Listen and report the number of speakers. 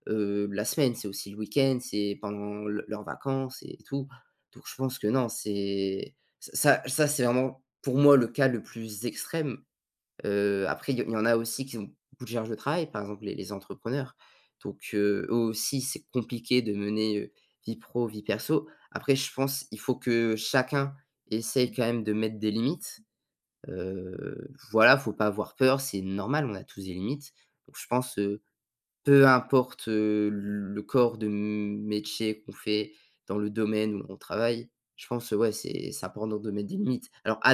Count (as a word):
one